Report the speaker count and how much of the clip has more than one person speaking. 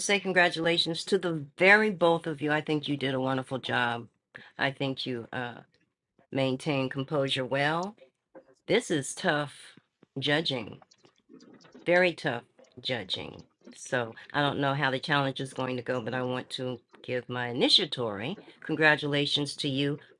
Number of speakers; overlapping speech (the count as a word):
one, no overlap